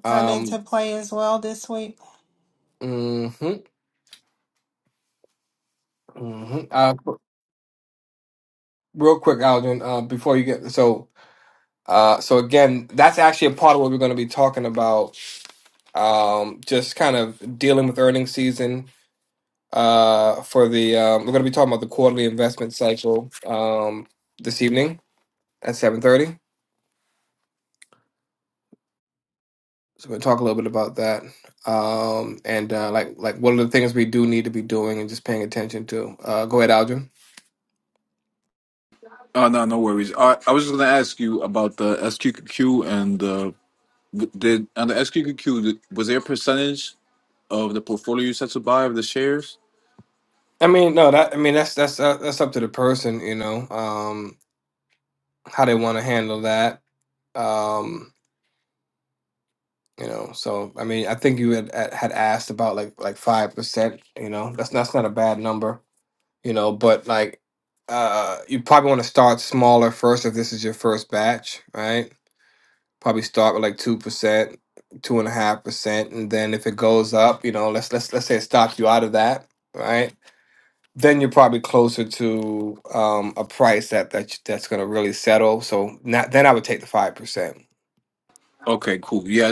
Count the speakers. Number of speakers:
three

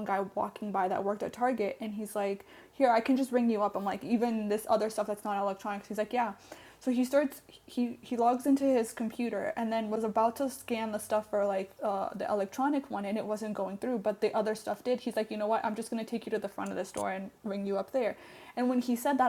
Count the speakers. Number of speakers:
one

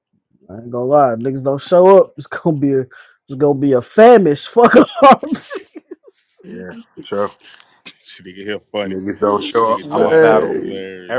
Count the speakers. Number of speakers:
three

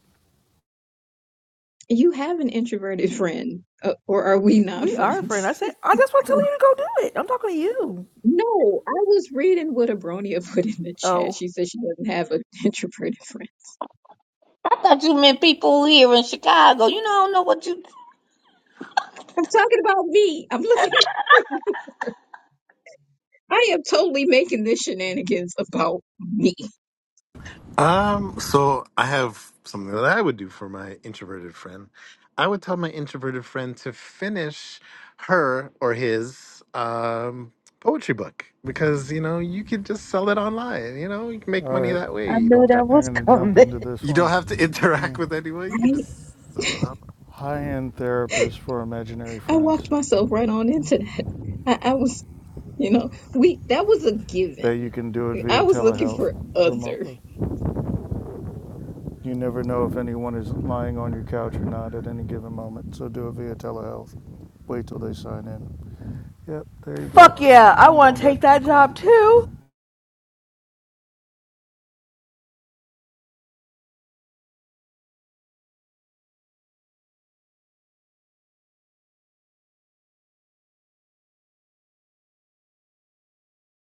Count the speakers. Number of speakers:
five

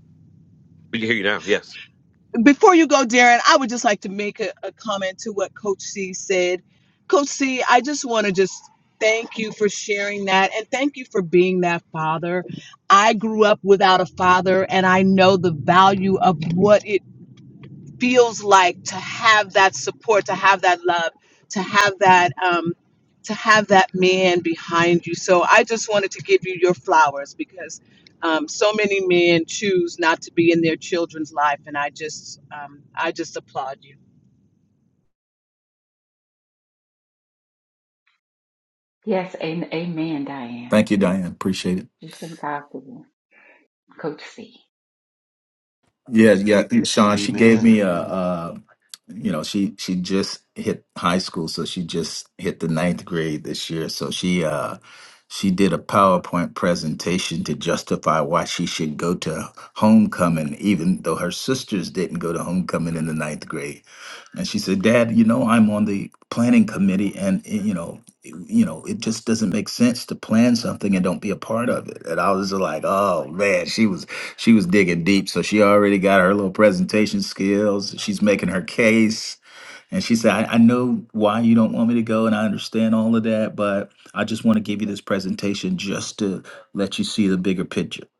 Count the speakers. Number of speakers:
four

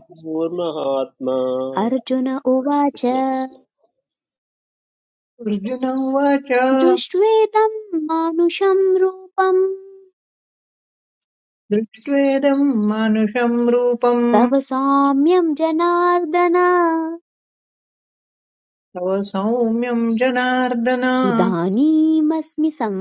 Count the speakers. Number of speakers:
three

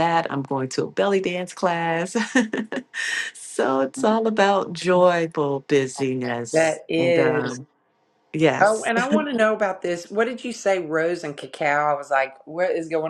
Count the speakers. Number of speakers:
two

